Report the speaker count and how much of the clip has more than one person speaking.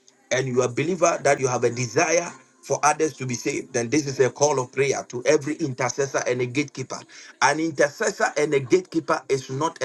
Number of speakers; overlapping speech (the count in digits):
1, no overlap